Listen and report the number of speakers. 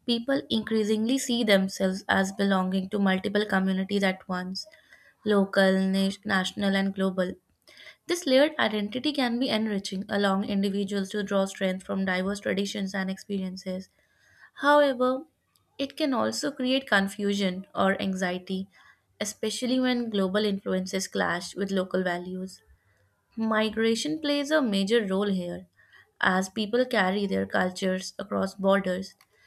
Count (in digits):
1